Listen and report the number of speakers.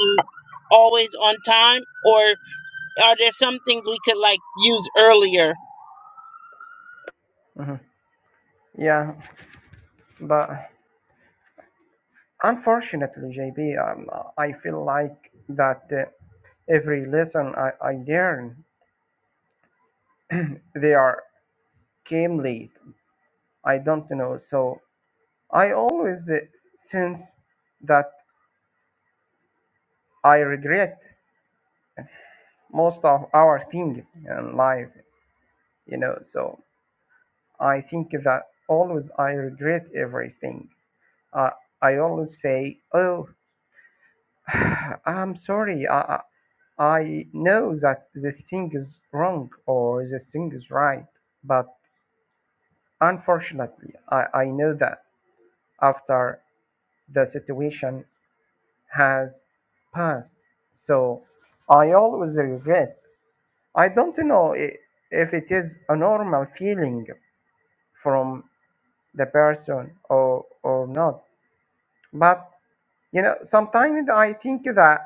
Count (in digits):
2